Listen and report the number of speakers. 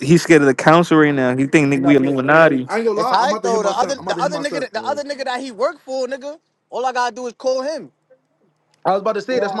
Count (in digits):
3